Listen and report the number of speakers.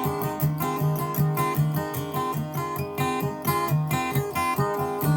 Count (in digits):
0